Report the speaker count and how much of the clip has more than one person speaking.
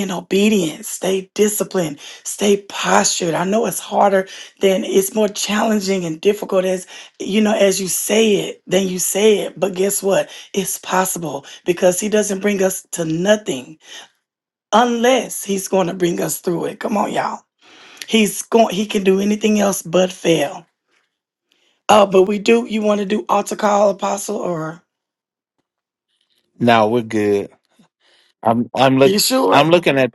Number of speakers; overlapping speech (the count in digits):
2, about 1%